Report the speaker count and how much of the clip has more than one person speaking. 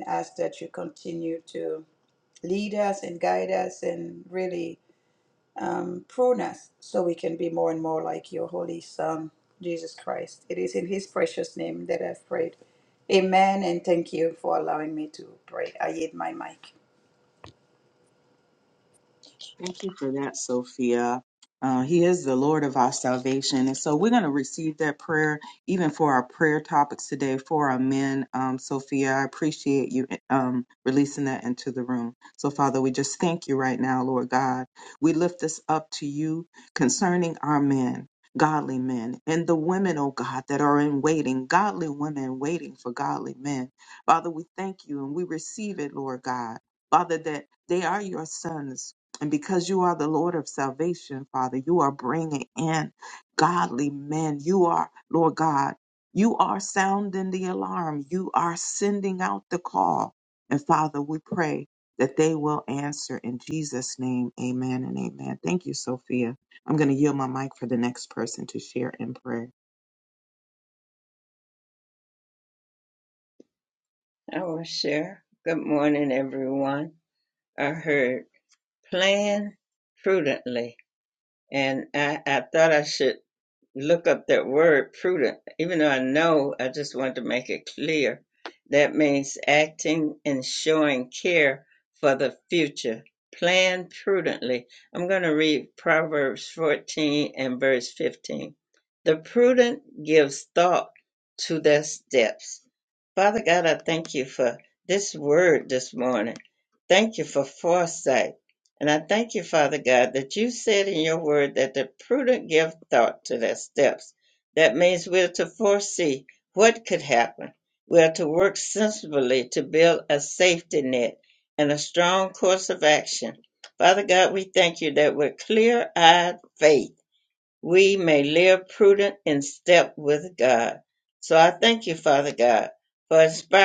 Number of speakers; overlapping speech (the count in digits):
3, no overlap